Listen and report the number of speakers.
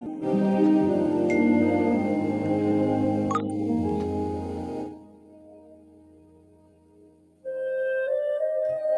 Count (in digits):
0